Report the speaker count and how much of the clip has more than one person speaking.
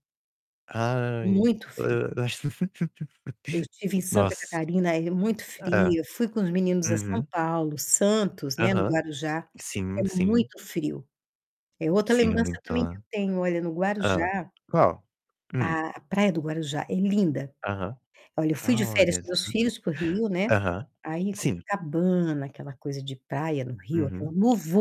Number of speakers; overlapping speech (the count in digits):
2, about 20%